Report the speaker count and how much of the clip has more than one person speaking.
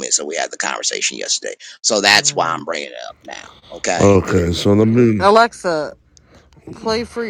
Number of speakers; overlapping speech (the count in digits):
3, about 15%